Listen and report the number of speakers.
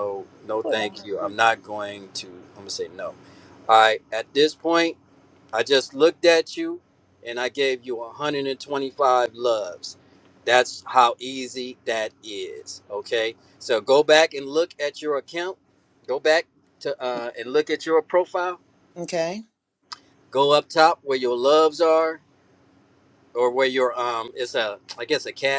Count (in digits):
2